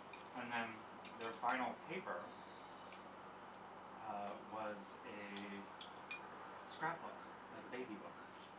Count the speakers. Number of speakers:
1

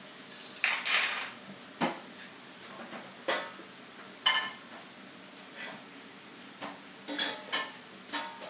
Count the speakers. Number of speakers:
0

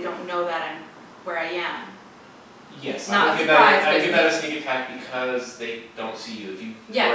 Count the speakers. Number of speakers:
2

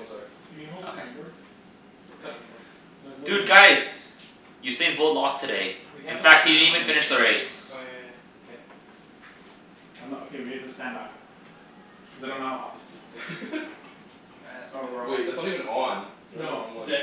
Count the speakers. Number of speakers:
4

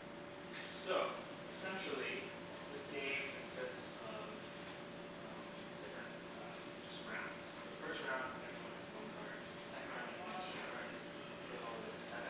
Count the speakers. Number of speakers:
1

